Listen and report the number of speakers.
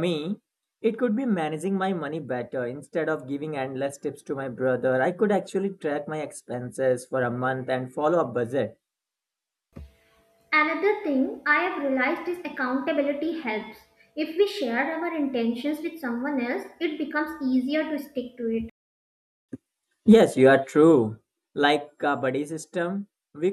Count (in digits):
2